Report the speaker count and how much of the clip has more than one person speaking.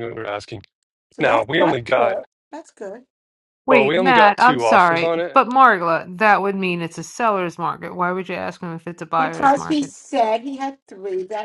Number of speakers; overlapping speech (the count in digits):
3, about 29%